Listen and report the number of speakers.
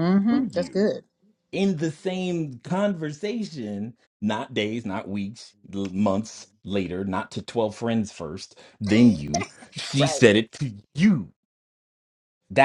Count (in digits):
2